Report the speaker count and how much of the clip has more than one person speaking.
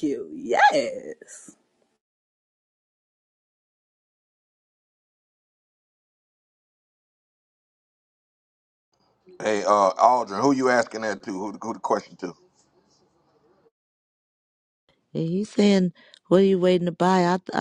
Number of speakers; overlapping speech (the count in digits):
3, no overlap